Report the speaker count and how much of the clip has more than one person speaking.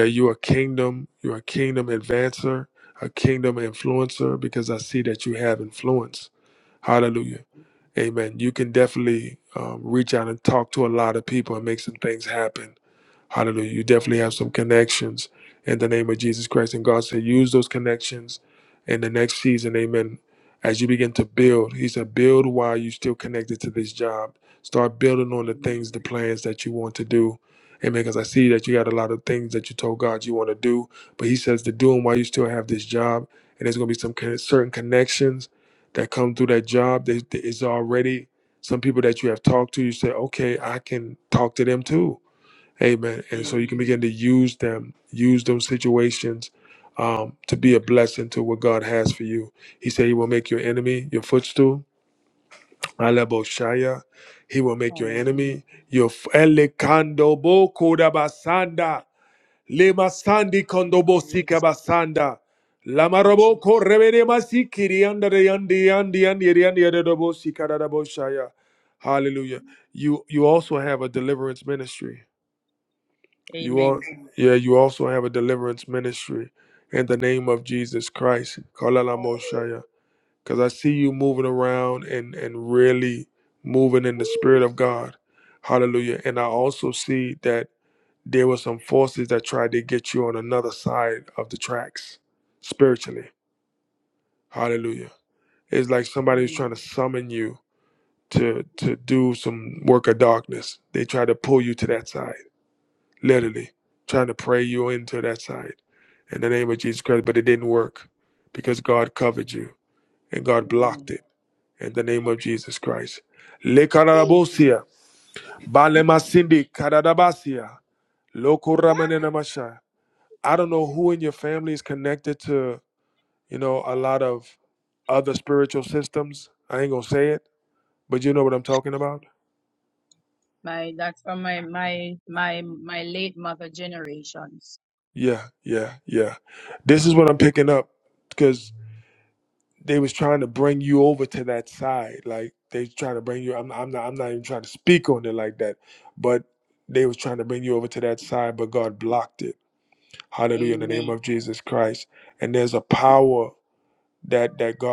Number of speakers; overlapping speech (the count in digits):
2, about 3%